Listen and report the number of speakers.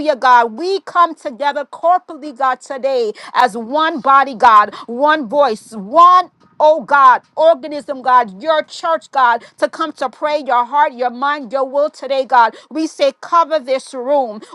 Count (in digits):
1